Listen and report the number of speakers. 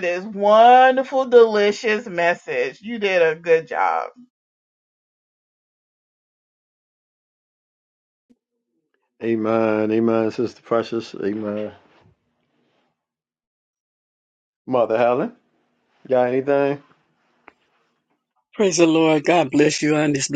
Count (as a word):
three